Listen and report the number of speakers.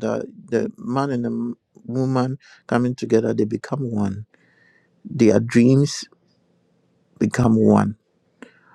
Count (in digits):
1